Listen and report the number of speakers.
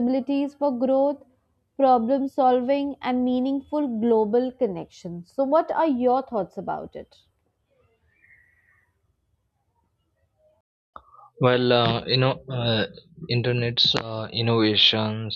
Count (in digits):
2